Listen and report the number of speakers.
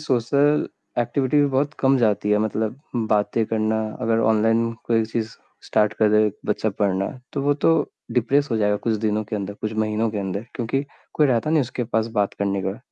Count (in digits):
1